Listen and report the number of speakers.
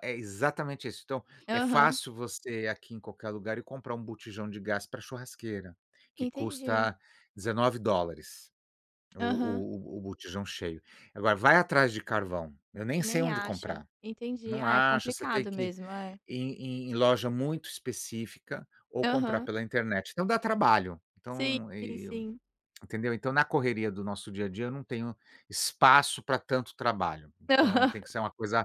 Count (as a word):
two